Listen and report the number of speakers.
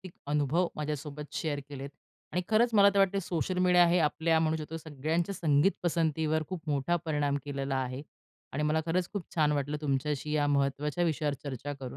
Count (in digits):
1